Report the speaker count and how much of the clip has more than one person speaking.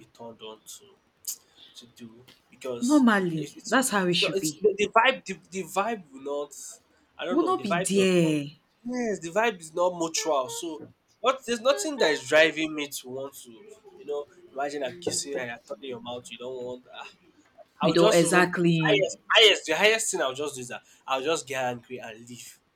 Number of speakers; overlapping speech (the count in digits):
2, about 12%